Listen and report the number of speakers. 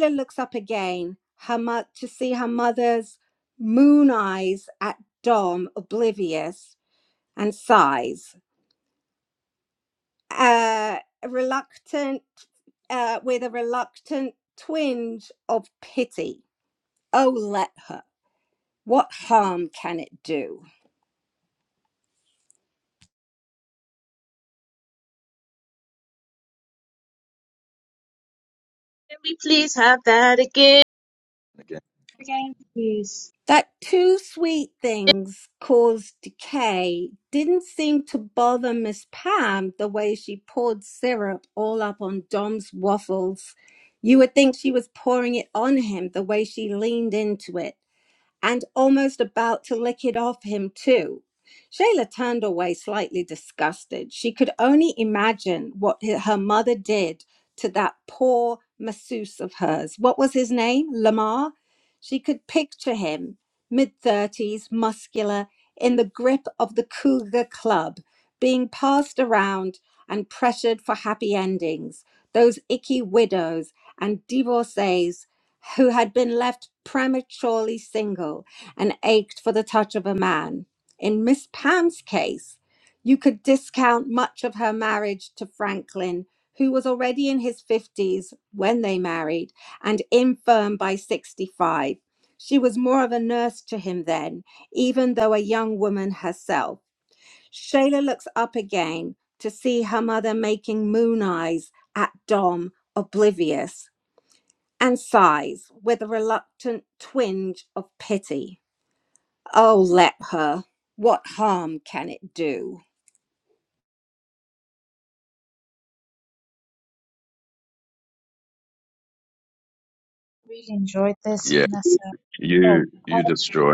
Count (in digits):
4